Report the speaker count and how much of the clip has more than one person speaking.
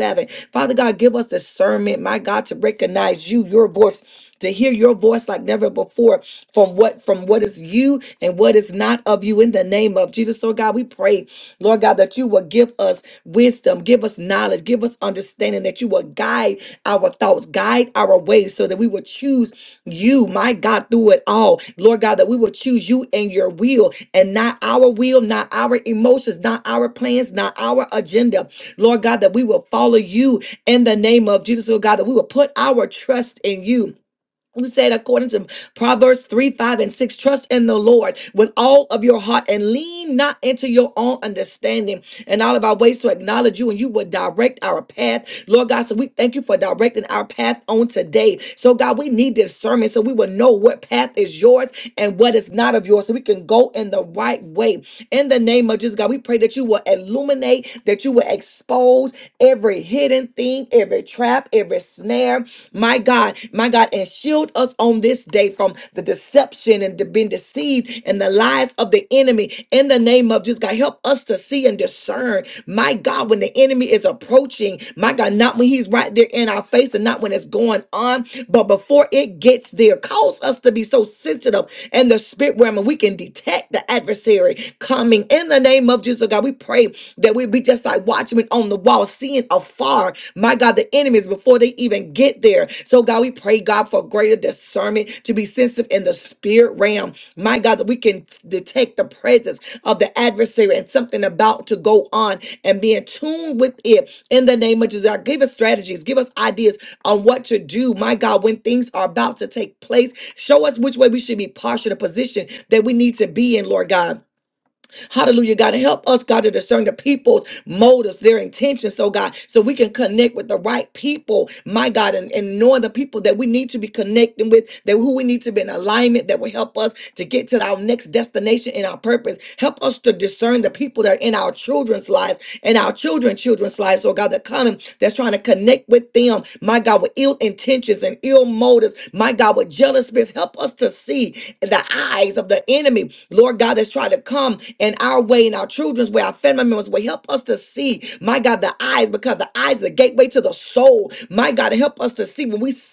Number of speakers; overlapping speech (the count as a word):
one, no overlap